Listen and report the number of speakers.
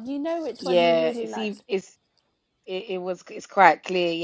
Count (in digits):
2